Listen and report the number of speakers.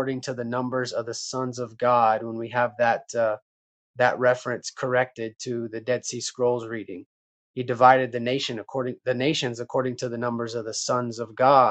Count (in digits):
1